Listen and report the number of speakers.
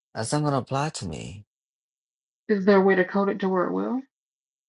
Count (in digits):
2